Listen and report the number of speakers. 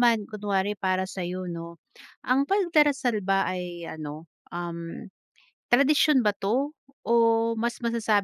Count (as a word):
one